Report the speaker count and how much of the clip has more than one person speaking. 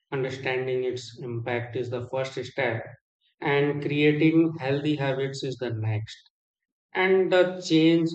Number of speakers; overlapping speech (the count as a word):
one, no overlap